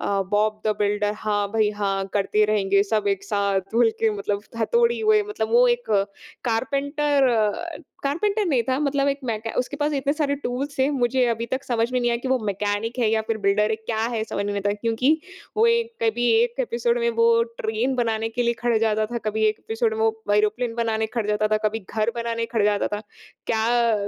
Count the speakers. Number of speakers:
one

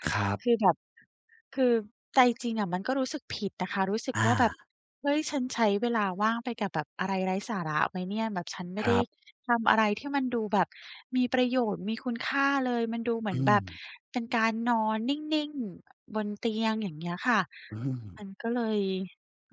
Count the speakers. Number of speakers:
two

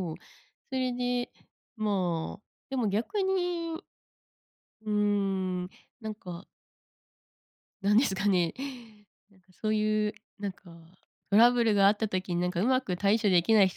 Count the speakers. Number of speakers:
one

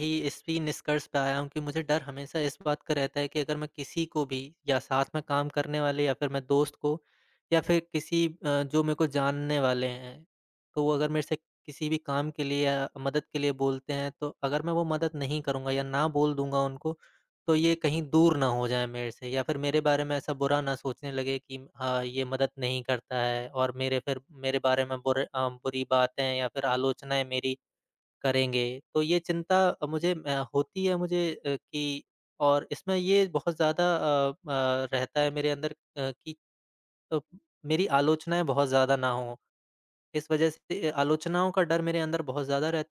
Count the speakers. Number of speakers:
one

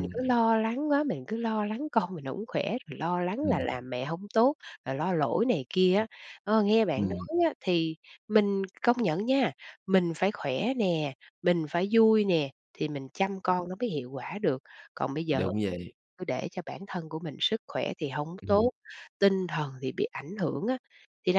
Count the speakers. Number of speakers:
two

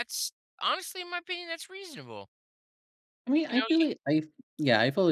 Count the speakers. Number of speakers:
two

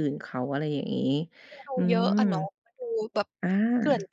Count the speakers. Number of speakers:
two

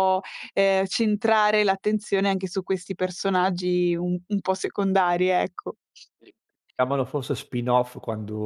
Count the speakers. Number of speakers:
two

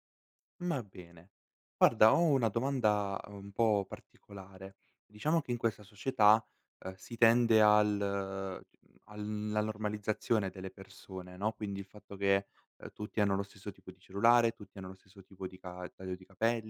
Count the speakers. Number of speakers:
one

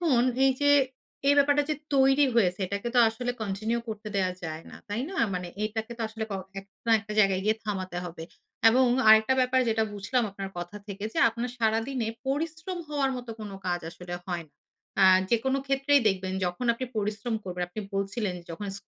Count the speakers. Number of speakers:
one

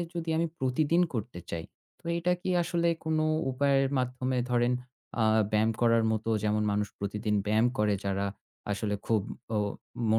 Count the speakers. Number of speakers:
one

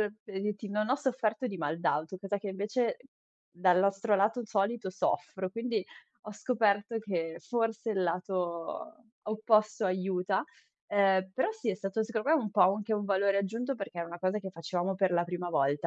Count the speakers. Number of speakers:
one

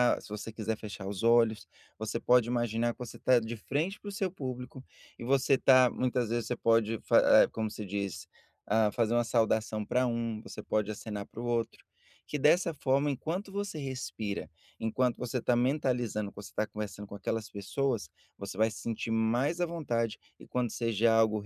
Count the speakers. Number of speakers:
one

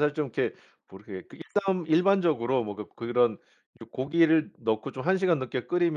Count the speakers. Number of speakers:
one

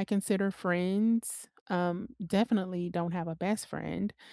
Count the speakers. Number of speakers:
one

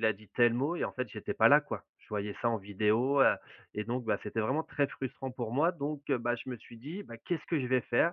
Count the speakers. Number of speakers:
one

